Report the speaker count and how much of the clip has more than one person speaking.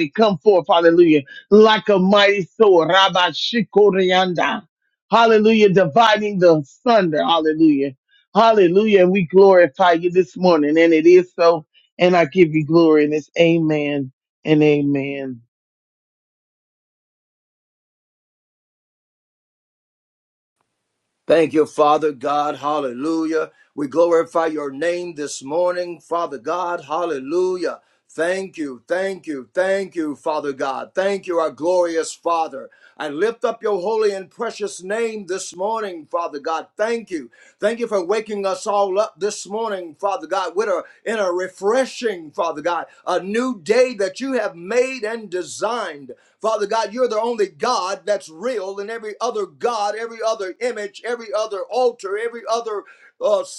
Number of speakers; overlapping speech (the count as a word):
two, no overlap